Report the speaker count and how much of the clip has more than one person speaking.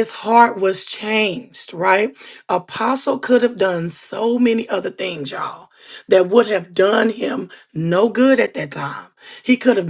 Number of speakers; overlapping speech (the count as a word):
one, no overlap